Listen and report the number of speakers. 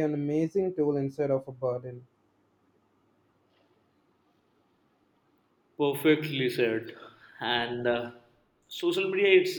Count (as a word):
two